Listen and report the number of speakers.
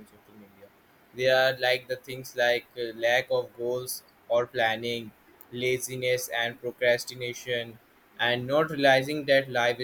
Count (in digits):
1